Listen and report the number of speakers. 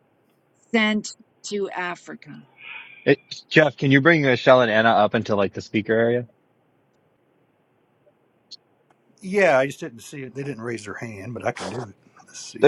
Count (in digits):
3